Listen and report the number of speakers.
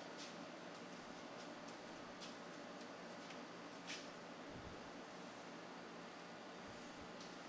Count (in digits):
0